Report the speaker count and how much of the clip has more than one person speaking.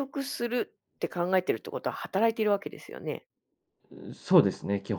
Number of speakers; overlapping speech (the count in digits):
2, no overlap